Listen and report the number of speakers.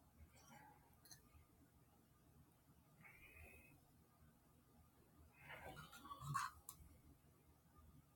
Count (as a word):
zero